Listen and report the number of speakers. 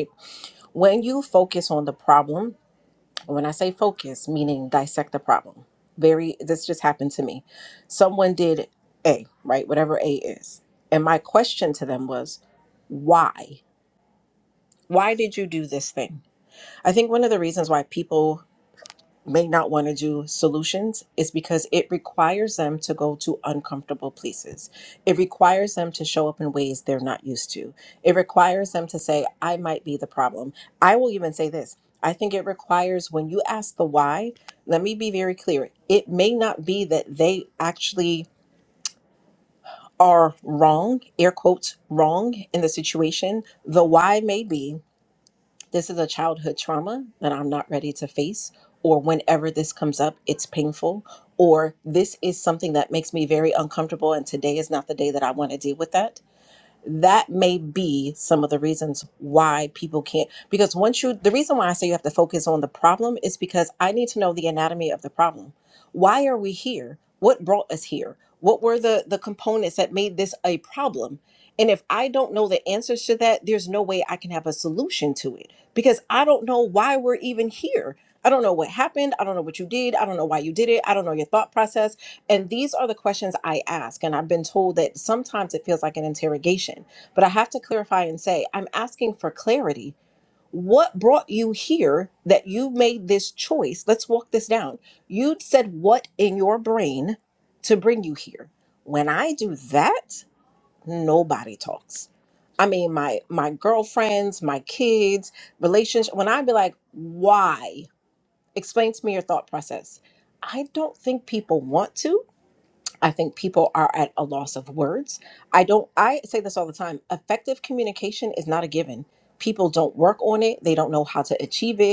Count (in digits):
1